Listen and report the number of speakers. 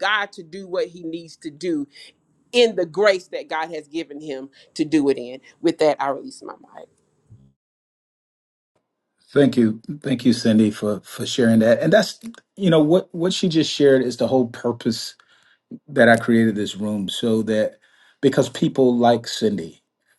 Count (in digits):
2